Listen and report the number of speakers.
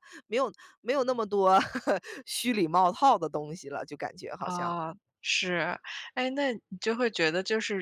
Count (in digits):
2